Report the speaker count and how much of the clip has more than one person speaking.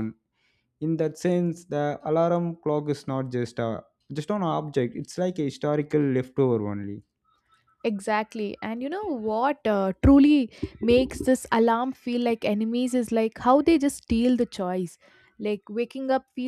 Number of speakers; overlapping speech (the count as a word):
two, no overlap